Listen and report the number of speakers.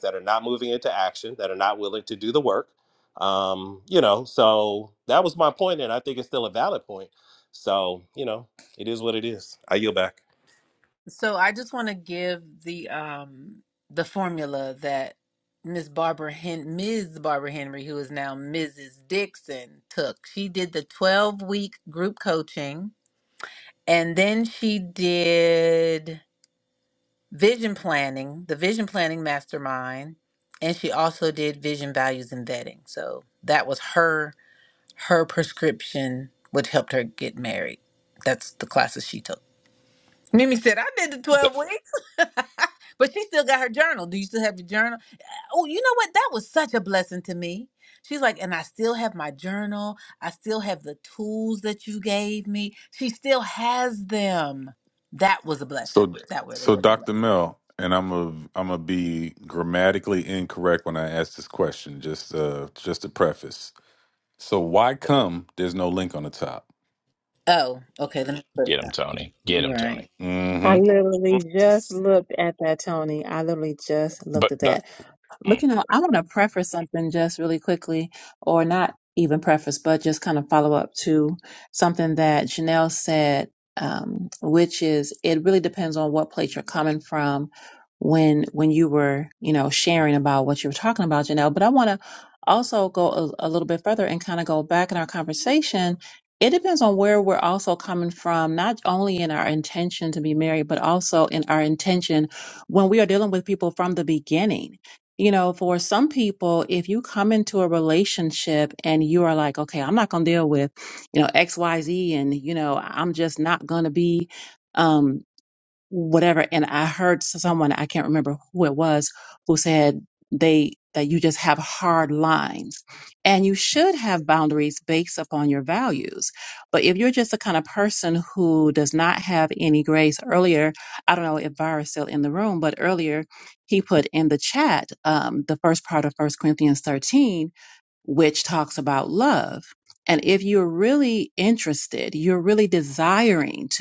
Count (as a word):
five